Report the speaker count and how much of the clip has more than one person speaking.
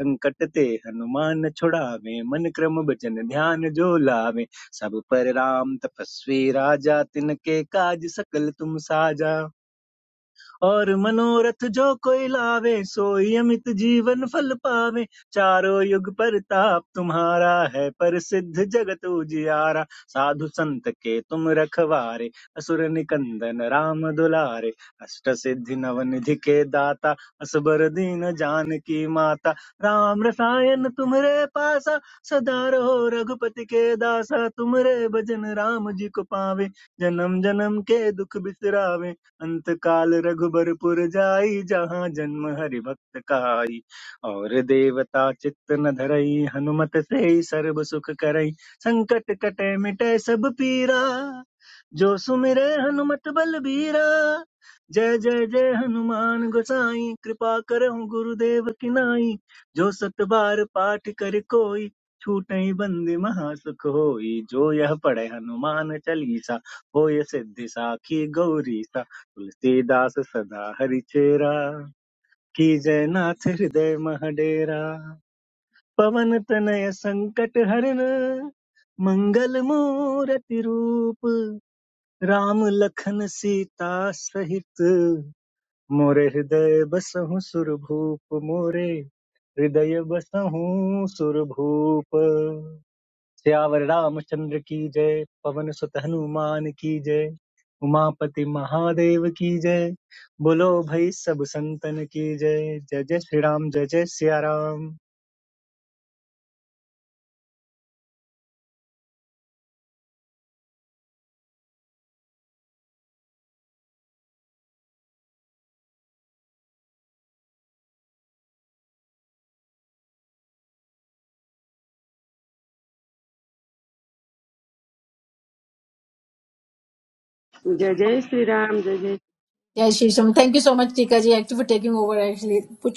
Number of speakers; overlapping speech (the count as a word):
three, no overlap